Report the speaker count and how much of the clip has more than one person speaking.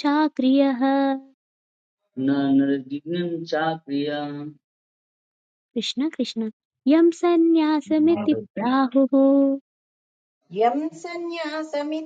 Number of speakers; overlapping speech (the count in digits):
3, no overlap